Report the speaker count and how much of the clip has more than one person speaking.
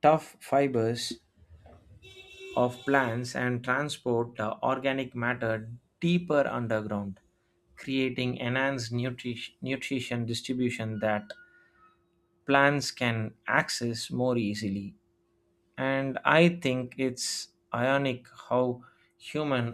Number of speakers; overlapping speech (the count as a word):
one, no overlap